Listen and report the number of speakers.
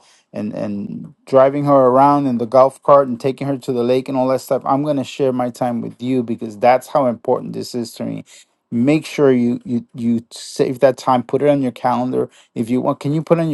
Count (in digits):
1